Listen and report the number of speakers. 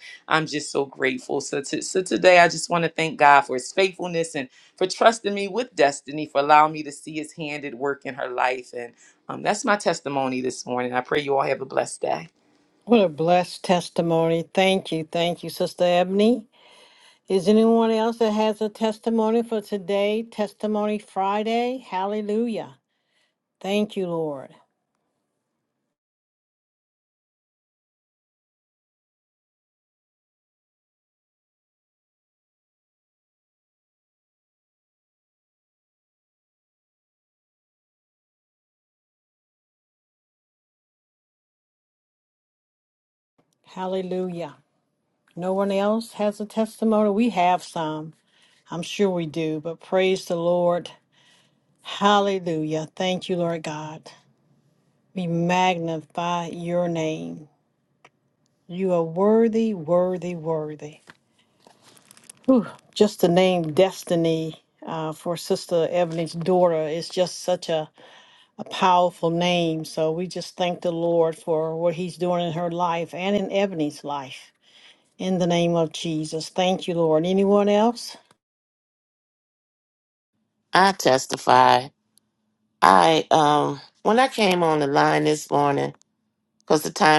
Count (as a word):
three